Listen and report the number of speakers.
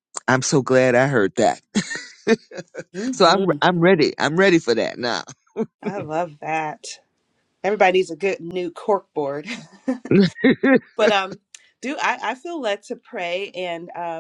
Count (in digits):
2